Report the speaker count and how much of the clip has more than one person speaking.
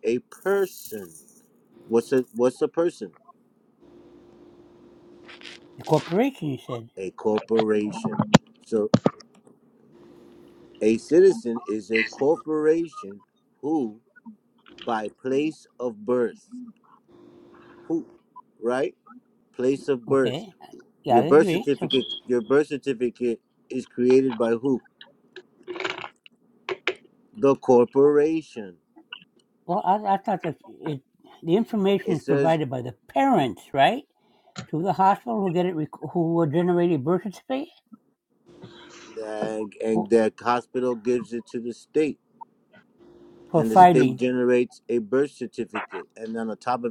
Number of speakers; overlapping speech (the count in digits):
2, about 5%